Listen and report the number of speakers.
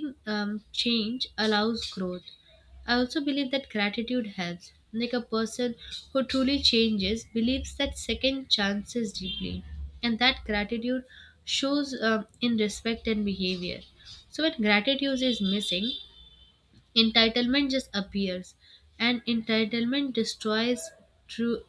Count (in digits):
1